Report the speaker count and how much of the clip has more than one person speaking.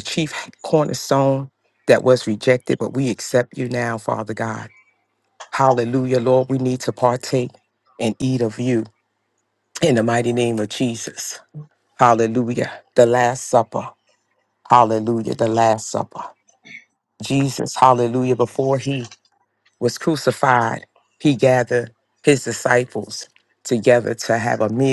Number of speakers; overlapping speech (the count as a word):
one, no overlap